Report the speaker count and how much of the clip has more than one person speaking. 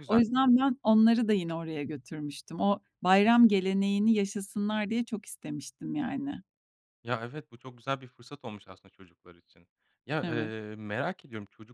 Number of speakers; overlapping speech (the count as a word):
two, about 3%